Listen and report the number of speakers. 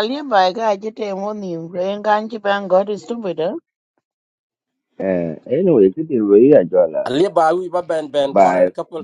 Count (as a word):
three